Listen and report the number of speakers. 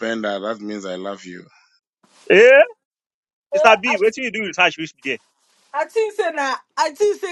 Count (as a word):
three